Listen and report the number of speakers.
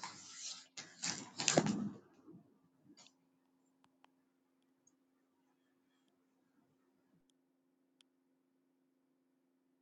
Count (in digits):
0